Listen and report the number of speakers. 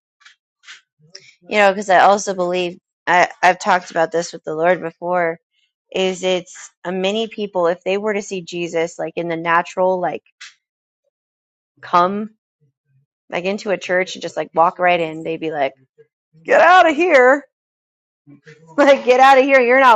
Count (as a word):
one